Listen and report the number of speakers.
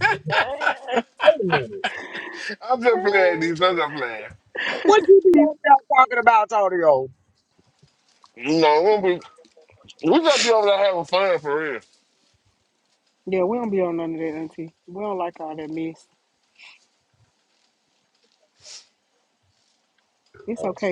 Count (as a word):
three